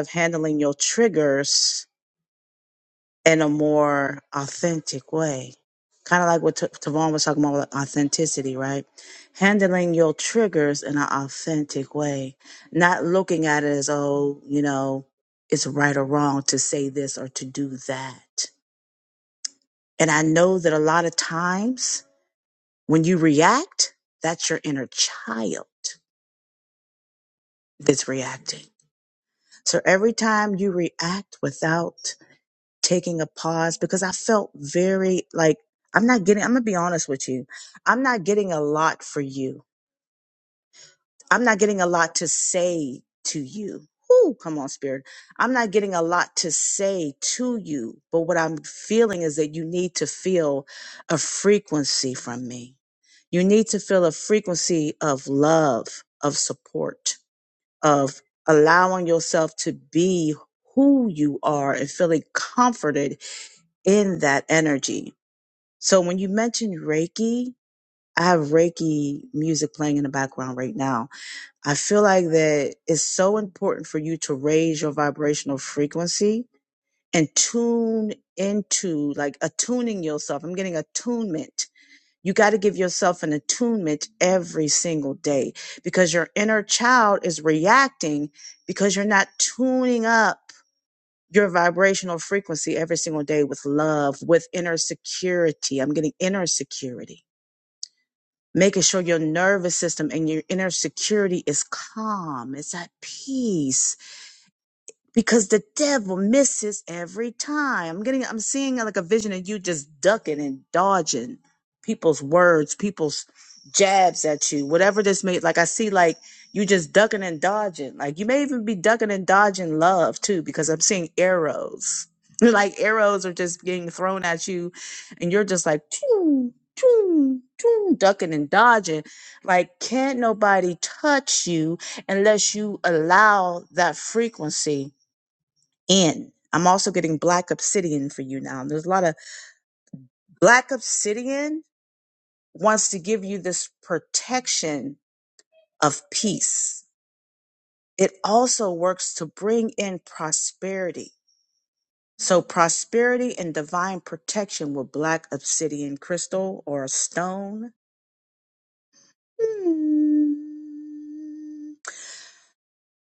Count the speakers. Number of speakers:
one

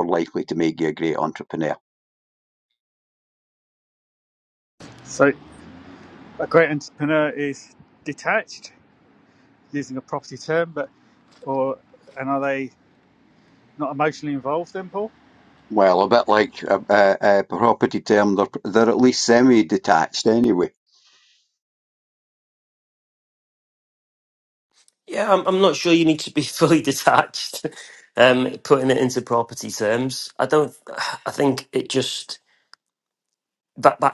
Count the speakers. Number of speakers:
three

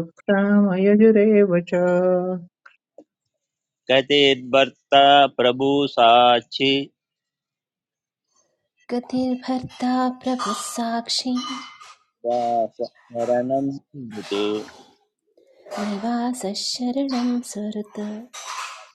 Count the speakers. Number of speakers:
three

